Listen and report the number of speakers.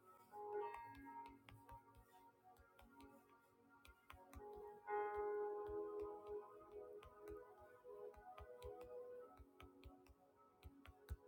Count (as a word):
zero